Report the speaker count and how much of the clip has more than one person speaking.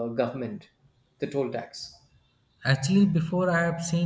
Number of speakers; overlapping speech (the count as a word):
two, no overlap